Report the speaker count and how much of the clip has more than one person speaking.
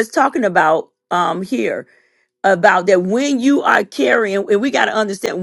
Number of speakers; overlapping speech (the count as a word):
one, no overlap